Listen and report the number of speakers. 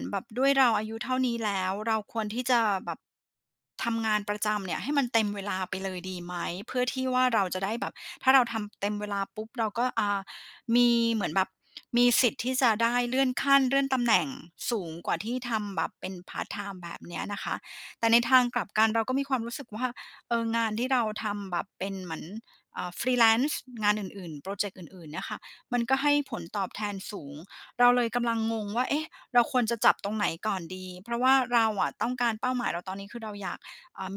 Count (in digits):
1